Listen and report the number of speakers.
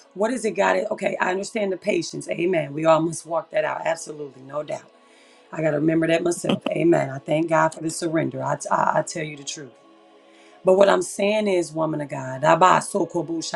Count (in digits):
1